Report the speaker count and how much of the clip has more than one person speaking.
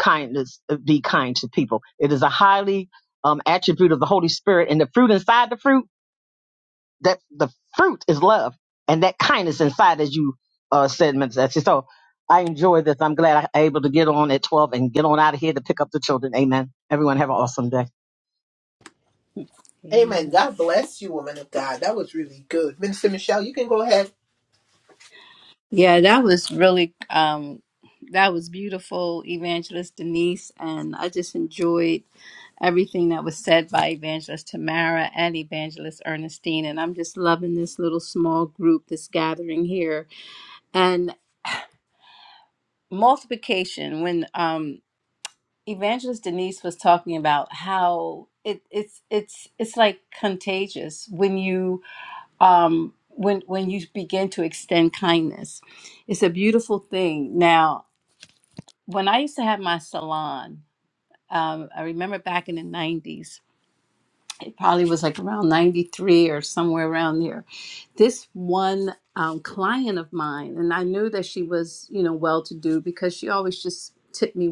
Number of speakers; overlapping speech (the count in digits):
3, about 1%